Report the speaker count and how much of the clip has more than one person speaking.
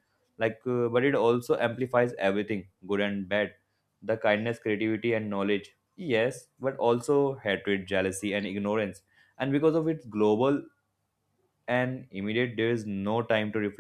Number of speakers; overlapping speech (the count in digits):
1, no overlap